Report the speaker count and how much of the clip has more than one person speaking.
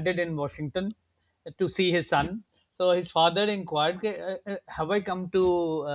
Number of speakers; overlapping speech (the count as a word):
one, no overlap